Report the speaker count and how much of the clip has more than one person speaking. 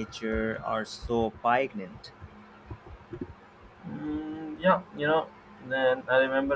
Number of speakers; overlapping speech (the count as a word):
two, no overlap